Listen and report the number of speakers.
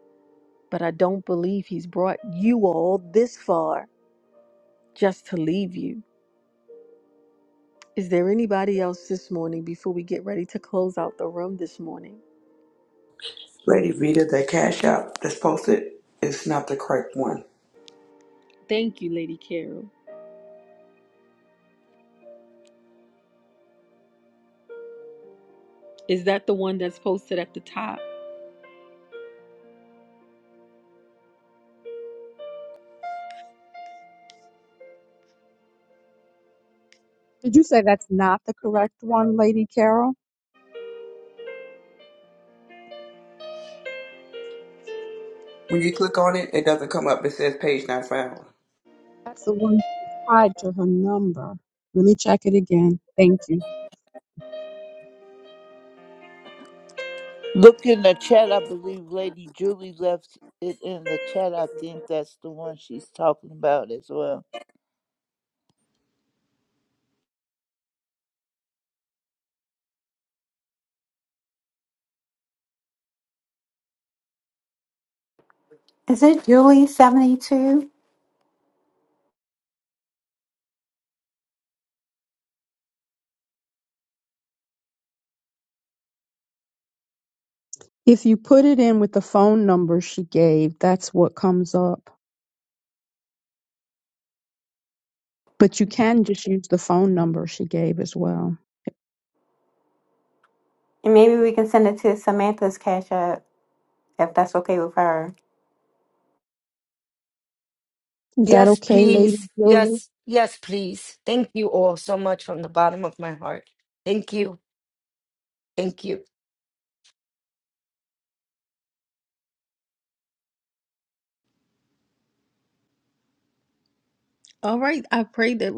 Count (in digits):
6